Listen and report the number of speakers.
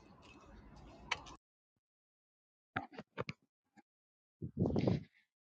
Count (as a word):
zero